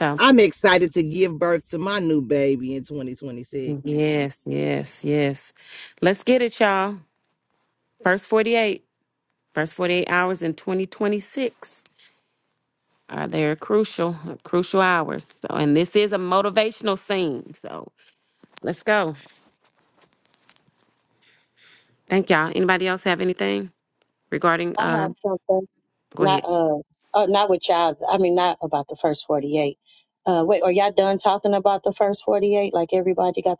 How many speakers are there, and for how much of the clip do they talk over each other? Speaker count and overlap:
three, about 2%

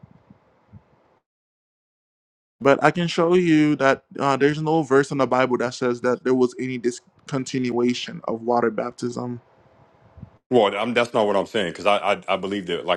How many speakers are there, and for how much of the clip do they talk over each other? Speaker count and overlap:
two, no overlap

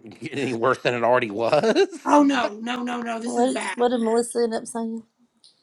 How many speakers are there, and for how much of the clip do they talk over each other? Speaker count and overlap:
three, about 9%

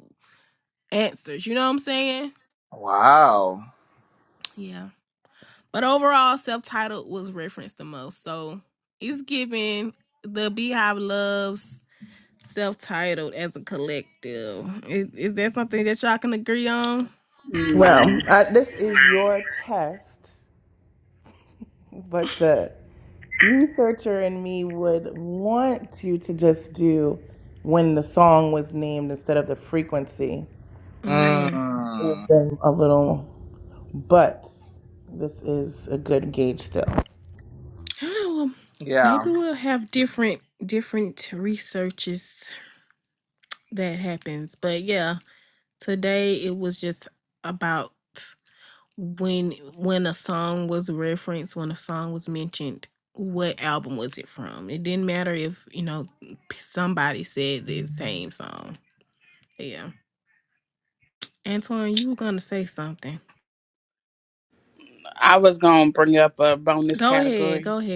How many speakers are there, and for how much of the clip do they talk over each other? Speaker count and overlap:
four, about 3%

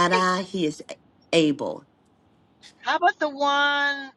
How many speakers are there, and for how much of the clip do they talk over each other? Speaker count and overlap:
two, about 6%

